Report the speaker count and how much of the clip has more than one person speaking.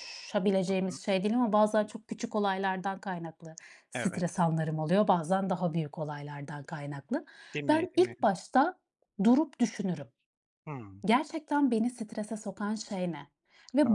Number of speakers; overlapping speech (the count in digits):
2, about 6%